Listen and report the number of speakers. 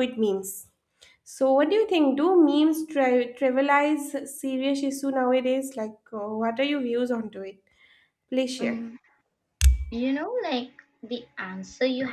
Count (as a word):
two